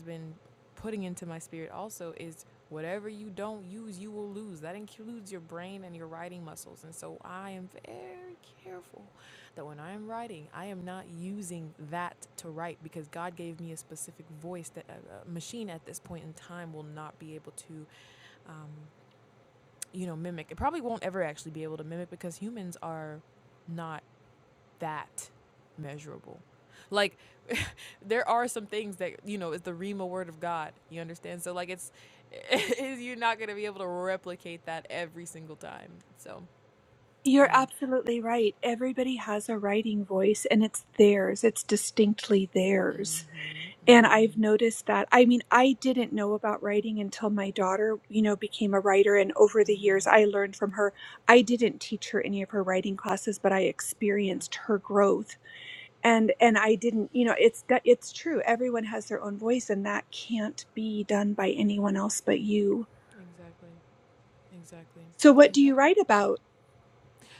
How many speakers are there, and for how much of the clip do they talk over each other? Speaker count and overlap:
two, about 2%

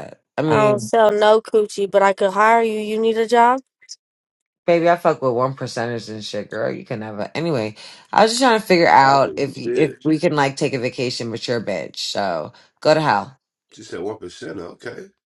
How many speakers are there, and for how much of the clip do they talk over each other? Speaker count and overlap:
three, about 9%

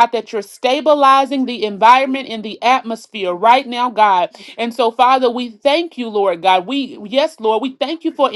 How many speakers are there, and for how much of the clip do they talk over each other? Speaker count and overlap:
one, no overlap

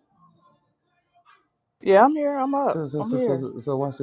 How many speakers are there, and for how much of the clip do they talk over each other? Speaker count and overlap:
two, about 17%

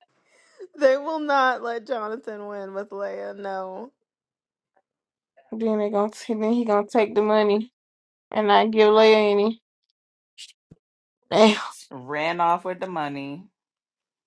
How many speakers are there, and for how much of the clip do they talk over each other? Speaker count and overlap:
three, no overlap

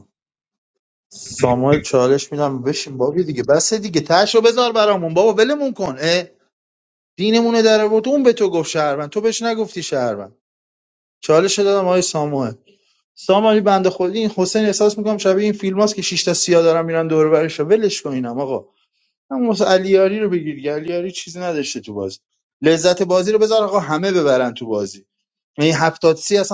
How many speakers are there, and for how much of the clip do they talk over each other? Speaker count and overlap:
one, no overlap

